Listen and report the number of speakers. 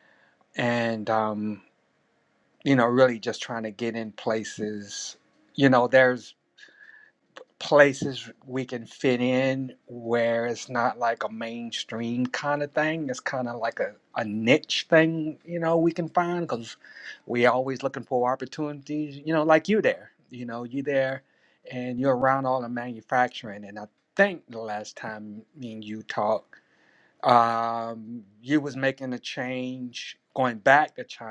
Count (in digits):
1